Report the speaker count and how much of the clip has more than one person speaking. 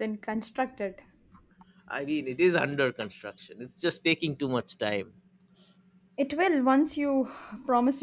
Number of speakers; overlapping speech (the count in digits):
2, no overlap